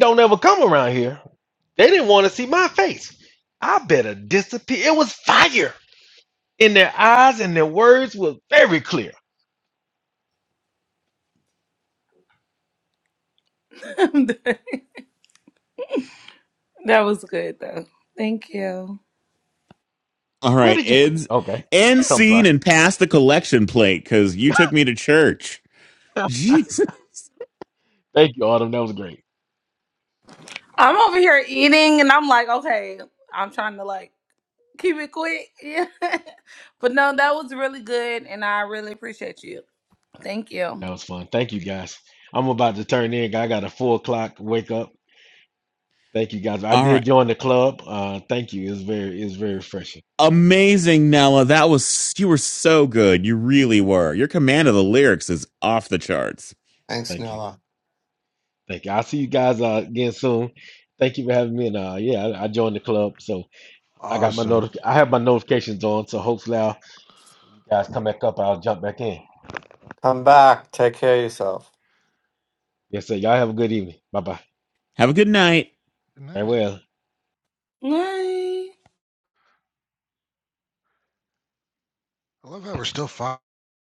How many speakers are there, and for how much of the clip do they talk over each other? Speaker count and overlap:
five, about 2%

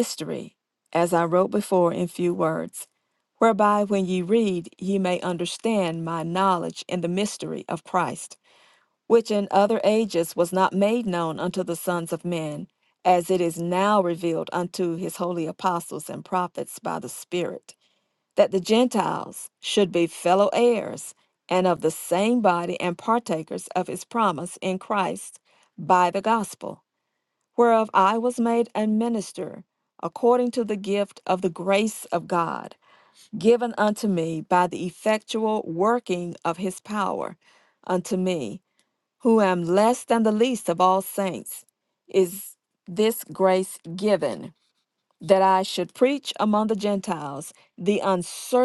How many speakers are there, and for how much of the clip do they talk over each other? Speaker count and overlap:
one, no overlap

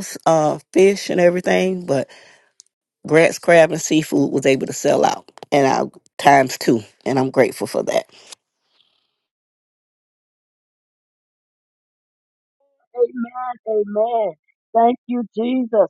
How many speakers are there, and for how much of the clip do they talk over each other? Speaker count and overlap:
two, no overlap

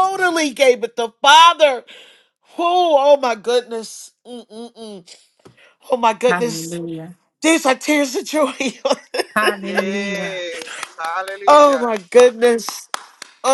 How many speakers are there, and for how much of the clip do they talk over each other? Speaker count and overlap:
three, about 11%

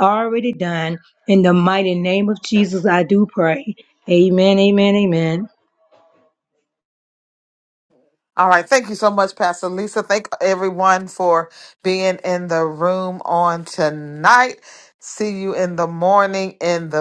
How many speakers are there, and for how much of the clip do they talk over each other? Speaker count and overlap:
two, no overlap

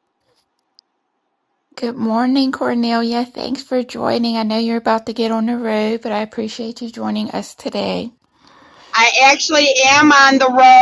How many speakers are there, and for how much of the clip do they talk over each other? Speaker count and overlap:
two, no overlap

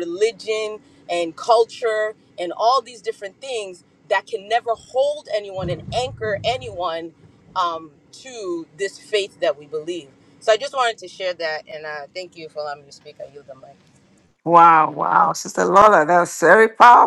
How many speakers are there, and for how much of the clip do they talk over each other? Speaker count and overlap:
two, no overlap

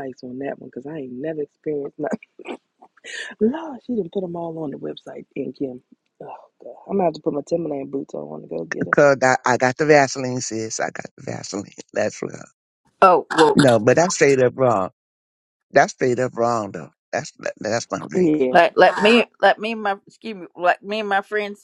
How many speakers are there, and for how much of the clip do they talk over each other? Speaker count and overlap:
three, about 2%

